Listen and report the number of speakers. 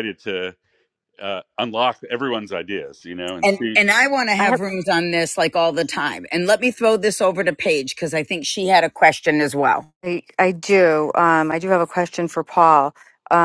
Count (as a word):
three